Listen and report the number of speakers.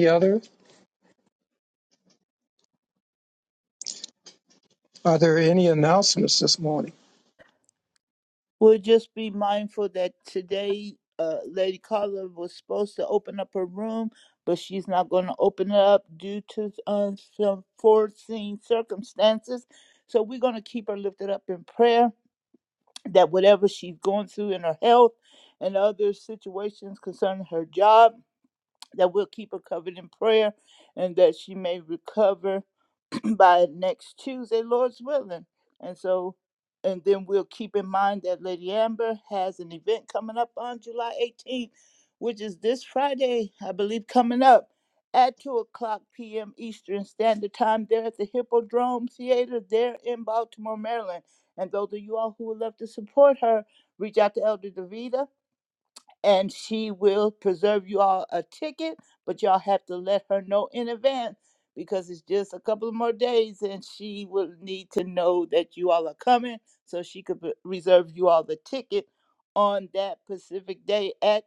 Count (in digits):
2